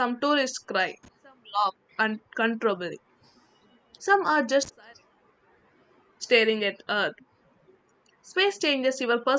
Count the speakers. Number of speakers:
1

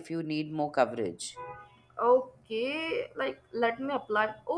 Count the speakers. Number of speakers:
2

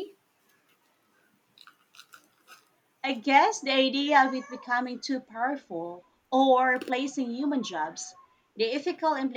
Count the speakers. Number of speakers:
1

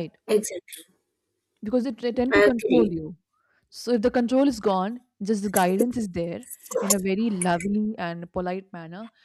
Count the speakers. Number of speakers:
2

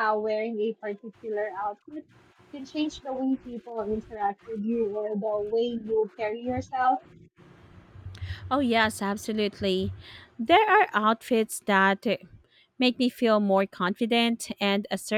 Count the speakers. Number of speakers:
2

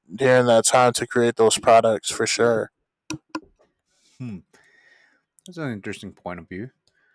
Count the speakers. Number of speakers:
2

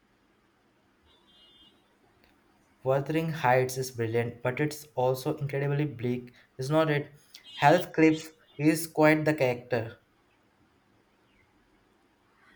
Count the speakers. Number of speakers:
1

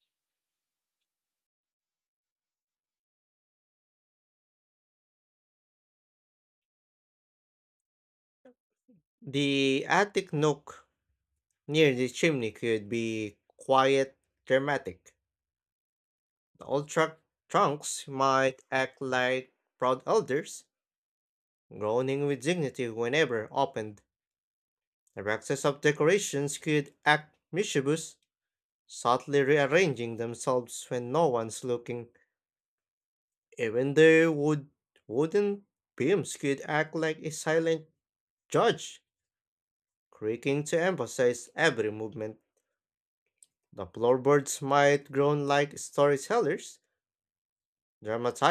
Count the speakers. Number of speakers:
1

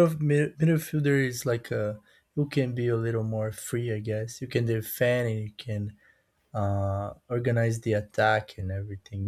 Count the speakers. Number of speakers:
1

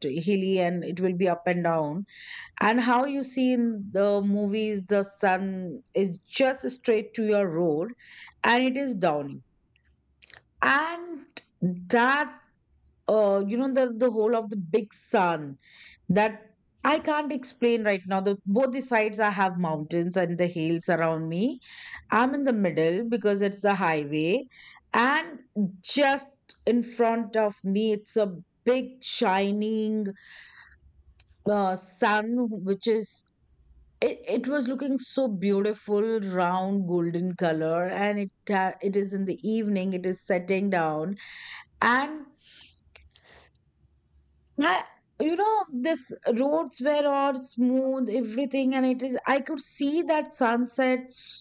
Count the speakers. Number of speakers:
1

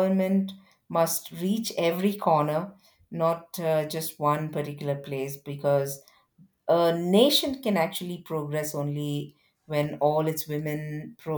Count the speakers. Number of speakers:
1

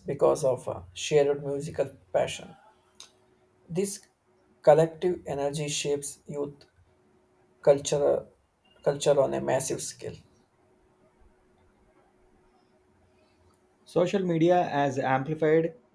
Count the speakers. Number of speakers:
2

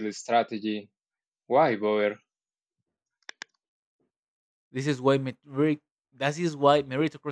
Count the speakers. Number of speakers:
2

